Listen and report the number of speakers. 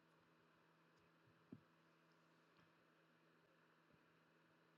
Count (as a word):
zero